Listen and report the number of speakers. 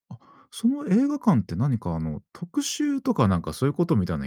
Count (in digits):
1